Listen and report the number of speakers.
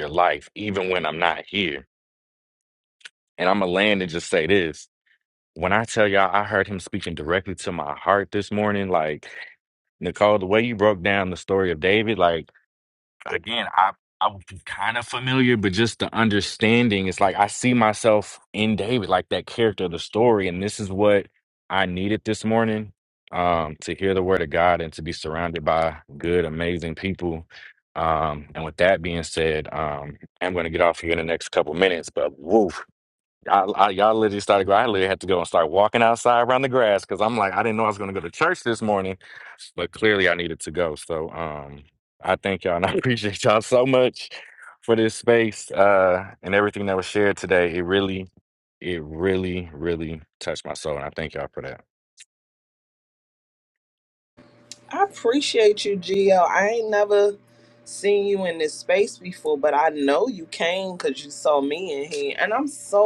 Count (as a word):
two